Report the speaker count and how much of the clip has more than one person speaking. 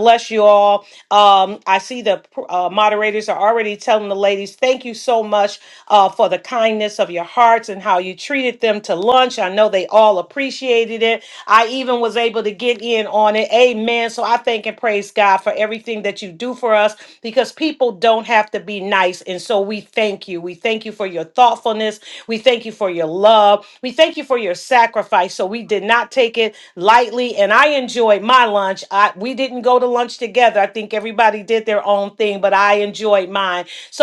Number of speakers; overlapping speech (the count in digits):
1, no overlap